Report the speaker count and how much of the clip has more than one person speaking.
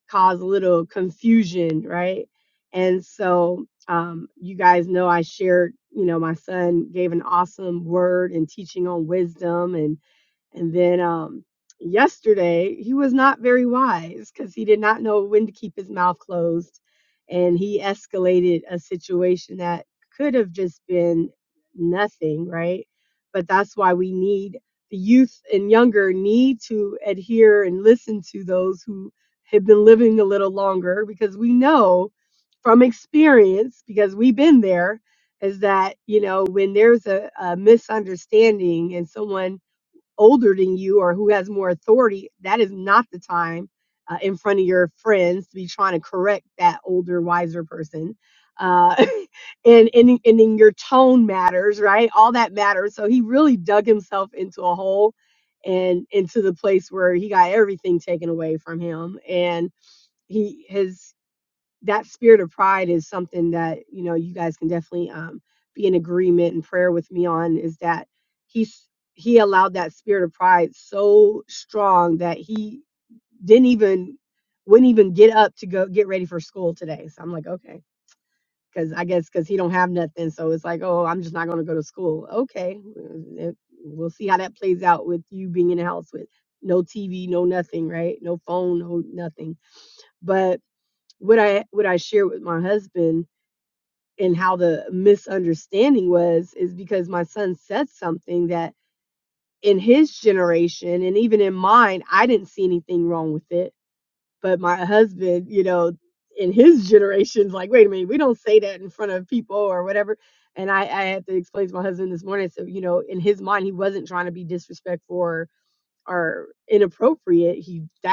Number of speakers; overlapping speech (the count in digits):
1, no overlap